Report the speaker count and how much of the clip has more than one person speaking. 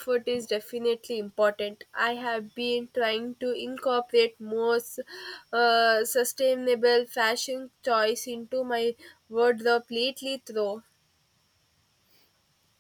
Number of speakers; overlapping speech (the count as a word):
one, no overlap